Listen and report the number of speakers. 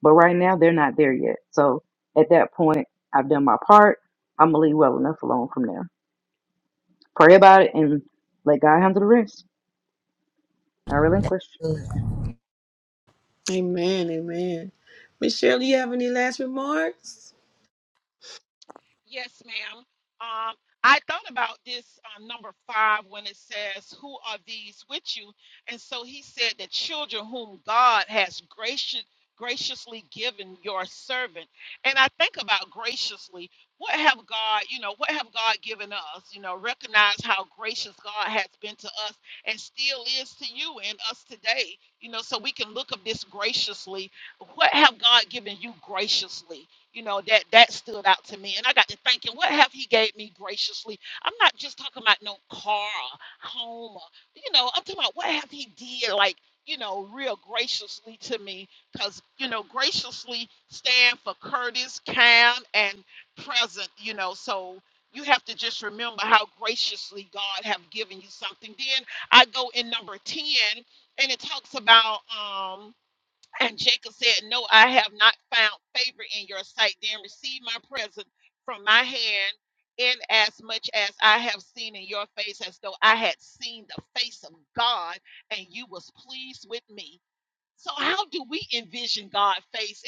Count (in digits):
3